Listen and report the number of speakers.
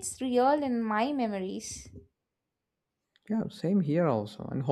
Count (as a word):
two